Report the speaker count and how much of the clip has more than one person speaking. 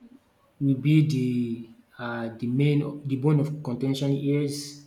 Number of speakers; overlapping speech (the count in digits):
1, no overlap